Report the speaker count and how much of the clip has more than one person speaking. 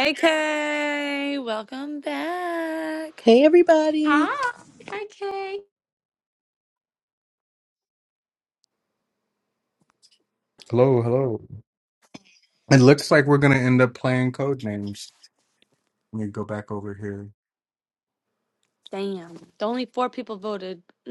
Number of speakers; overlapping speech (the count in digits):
4, about 1%